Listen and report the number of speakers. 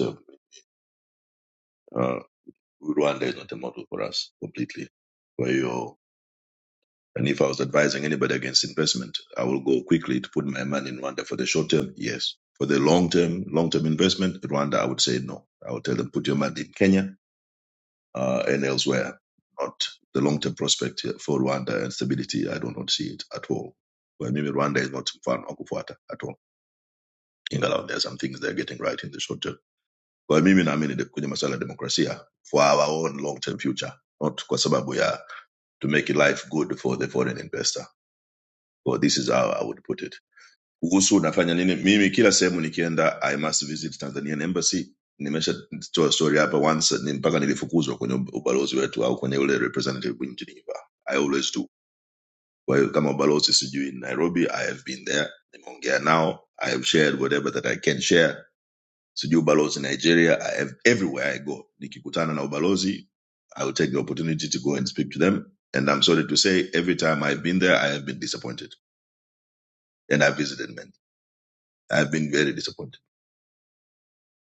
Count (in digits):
1